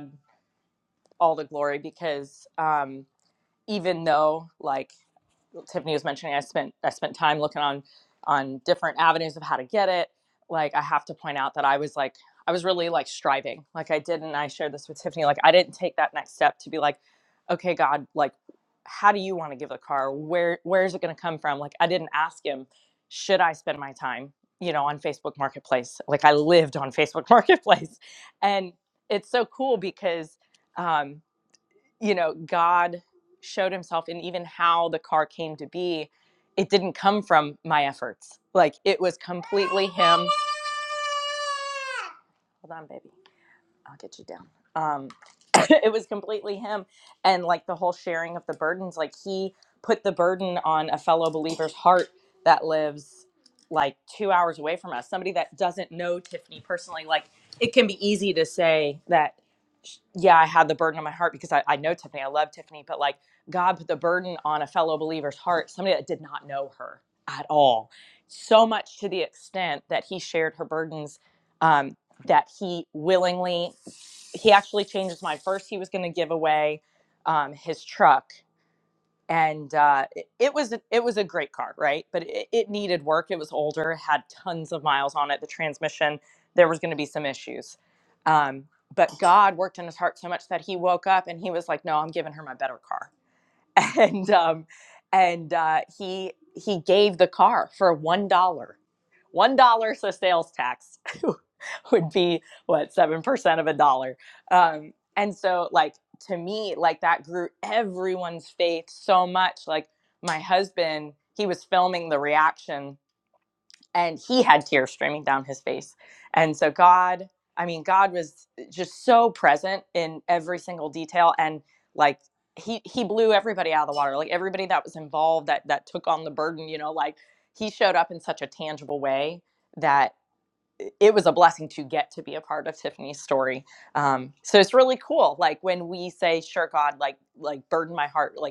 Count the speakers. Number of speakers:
1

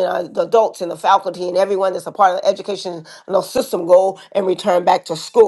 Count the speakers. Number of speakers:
1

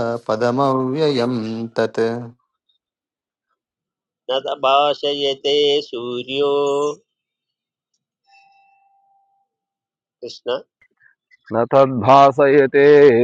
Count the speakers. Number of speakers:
3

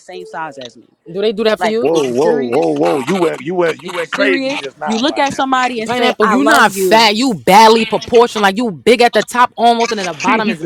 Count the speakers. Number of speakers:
3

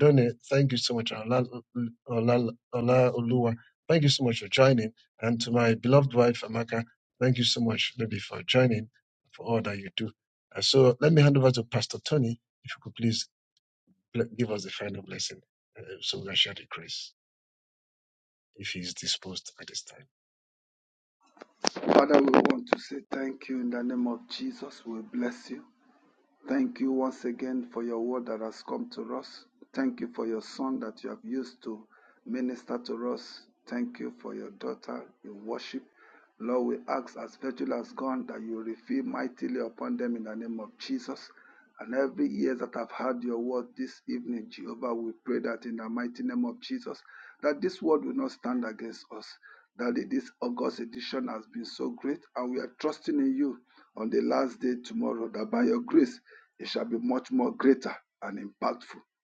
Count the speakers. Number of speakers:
2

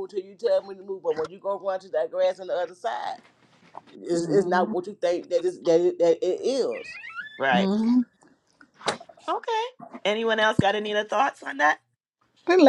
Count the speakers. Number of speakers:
3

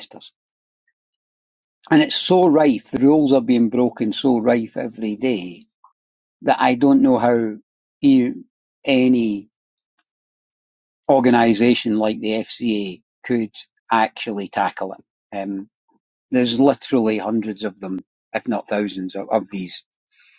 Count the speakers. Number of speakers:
1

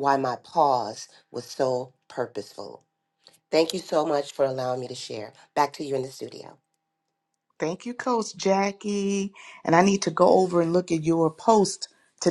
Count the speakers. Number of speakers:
2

